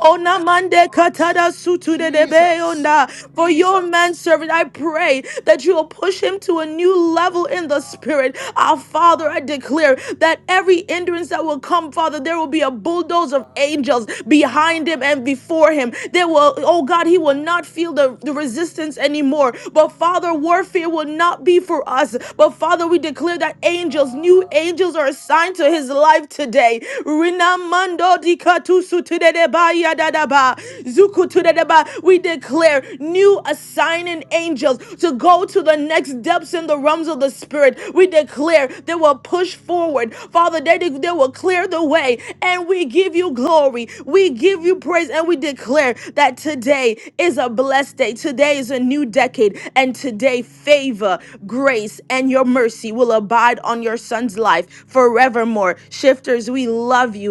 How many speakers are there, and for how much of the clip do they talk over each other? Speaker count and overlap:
one, no overlap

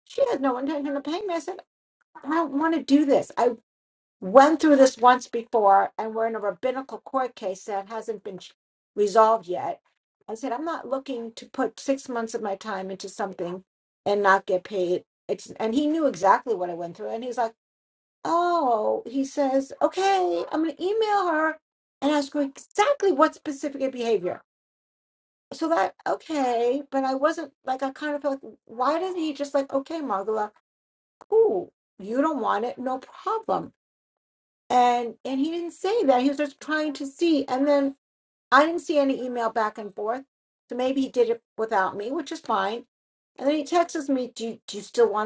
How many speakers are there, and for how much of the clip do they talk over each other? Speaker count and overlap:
one, no overlap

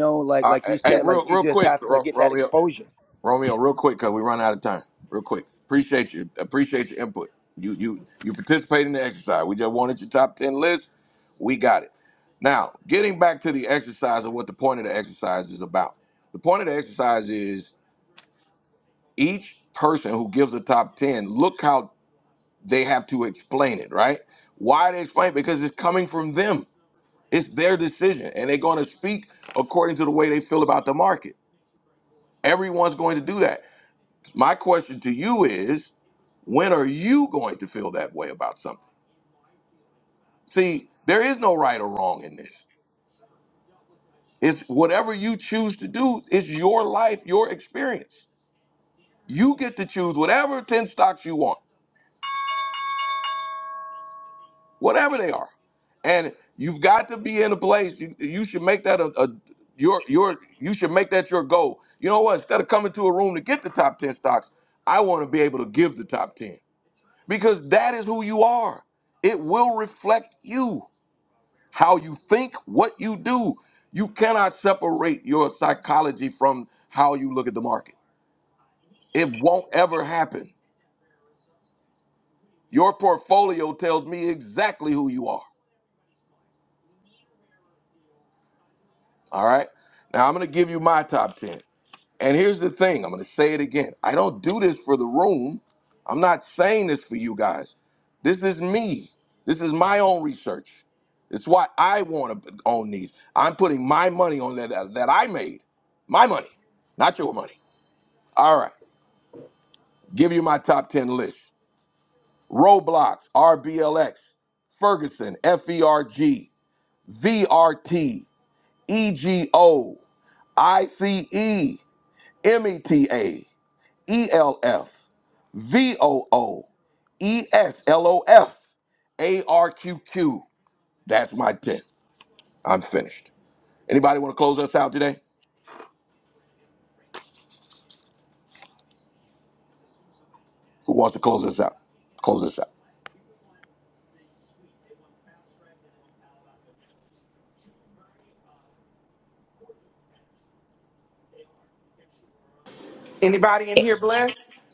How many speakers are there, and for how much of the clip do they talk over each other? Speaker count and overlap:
three, about 1%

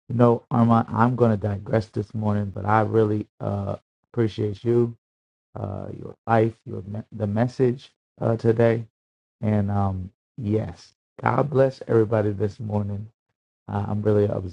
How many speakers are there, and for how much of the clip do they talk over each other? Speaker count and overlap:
one, no overlap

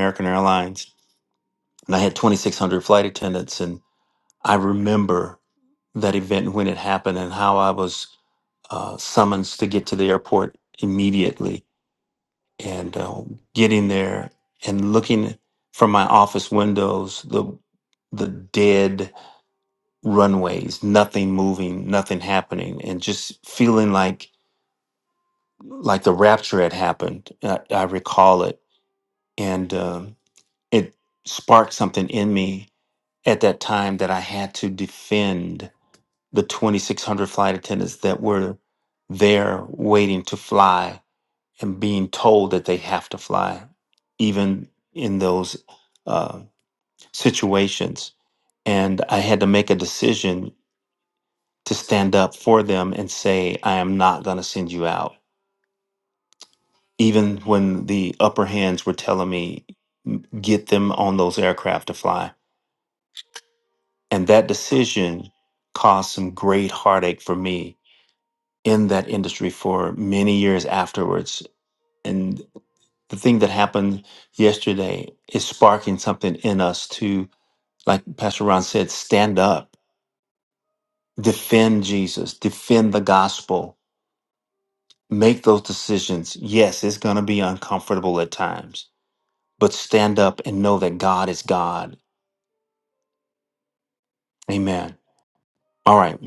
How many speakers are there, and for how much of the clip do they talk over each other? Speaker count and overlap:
one, no overlap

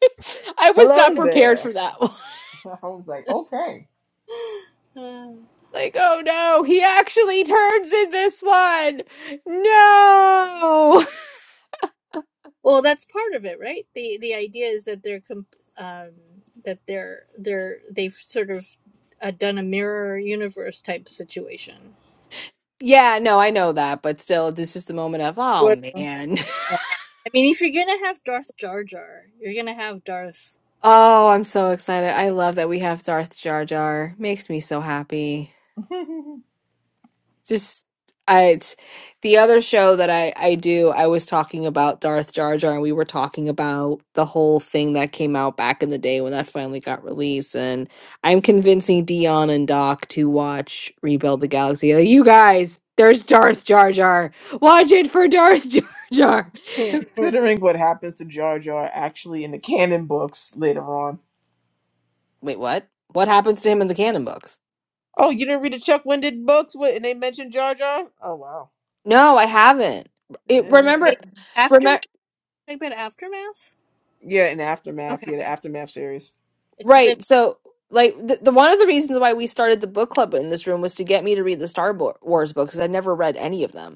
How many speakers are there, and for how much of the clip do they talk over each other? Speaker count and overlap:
three, about 3%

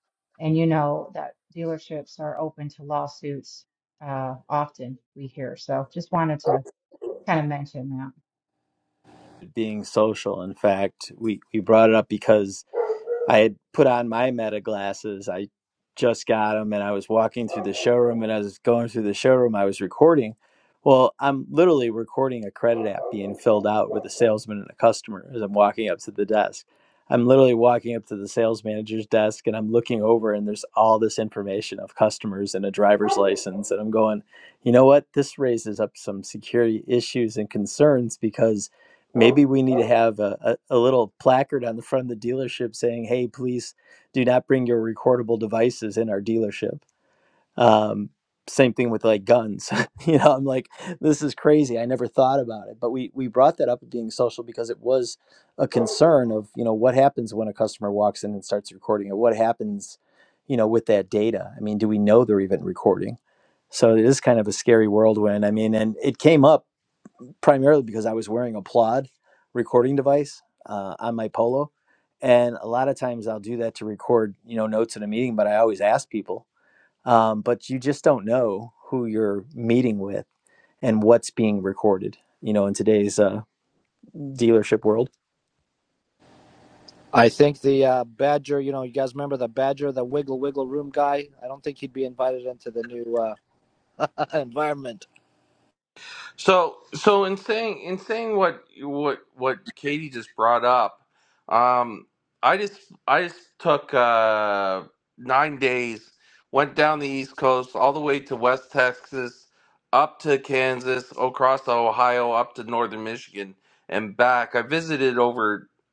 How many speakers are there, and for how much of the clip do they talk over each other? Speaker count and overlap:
four, no overlap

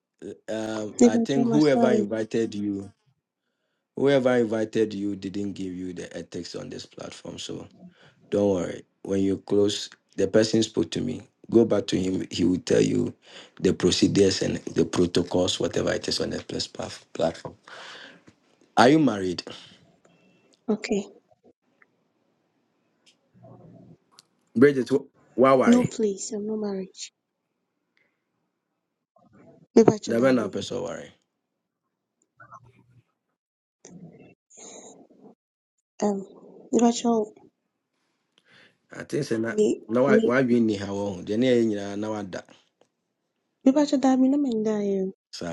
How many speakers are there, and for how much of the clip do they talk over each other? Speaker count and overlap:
two, about 6%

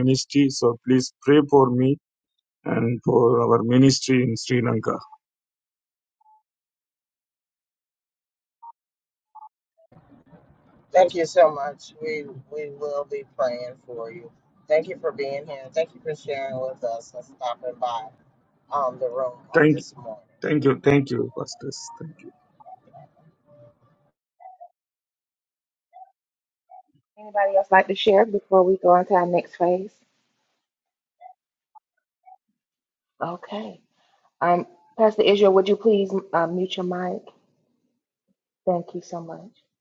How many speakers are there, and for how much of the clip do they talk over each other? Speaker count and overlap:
three, about 1%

